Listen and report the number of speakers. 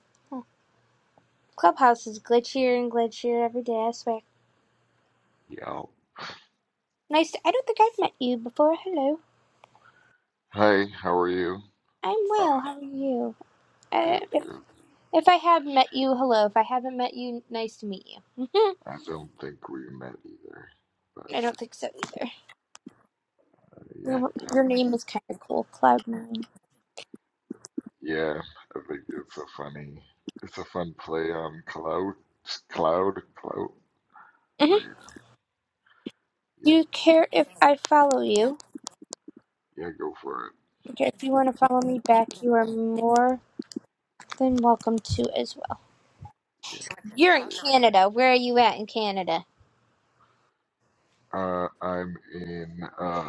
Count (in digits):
2